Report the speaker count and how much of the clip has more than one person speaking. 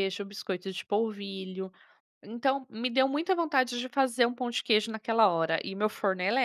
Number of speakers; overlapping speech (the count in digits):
1, no overlap